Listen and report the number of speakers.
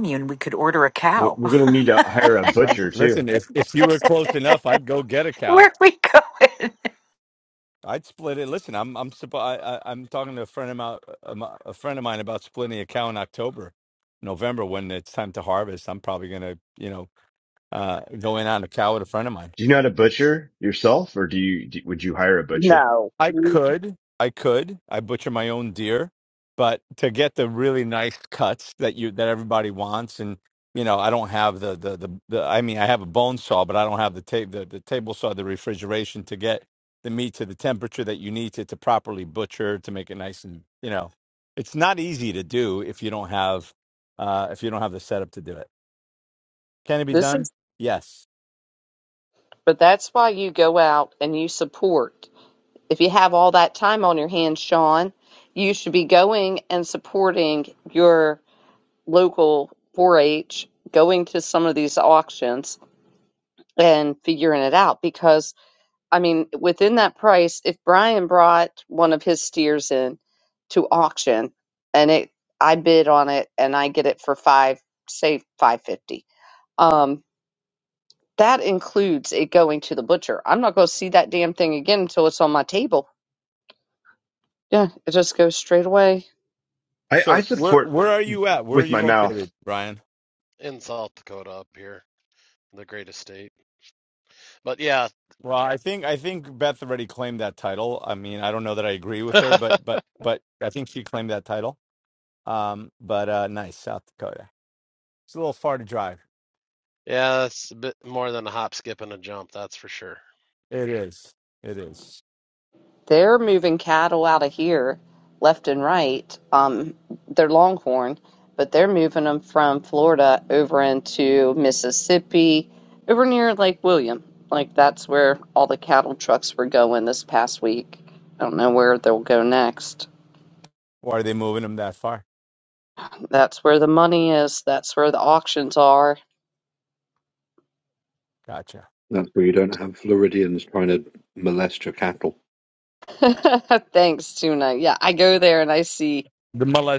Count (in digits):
6